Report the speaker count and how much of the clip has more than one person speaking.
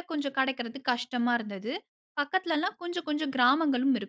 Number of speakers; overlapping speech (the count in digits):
1, no overlap